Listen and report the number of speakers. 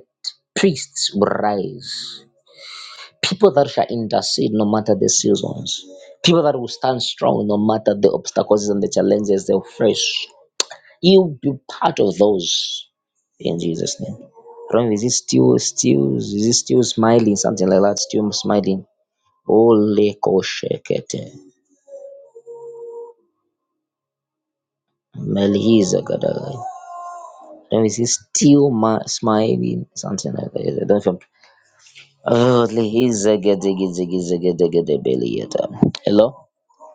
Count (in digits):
1